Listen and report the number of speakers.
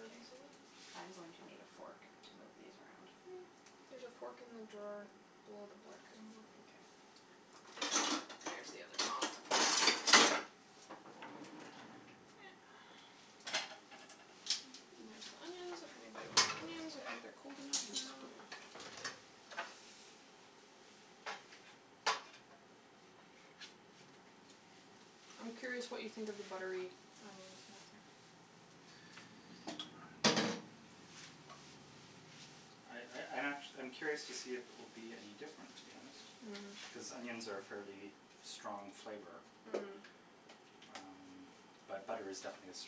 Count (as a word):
three